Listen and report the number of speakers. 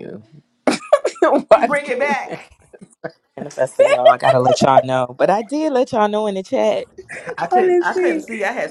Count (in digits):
3